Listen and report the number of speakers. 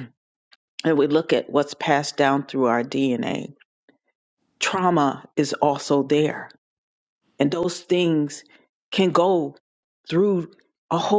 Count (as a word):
one